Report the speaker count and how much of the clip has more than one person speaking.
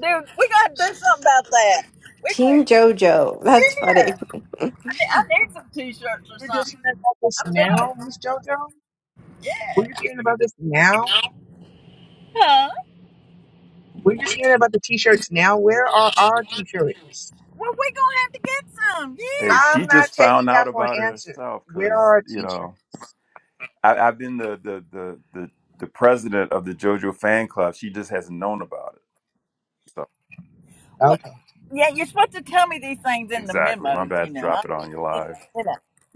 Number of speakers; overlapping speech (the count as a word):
four, about 17%